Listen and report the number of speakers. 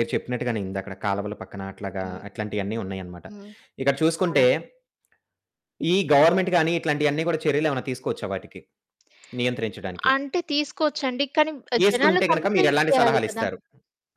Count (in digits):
2